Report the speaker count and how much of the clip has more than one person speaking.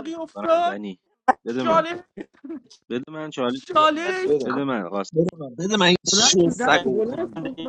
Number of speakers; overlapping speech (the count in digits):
3, about 28%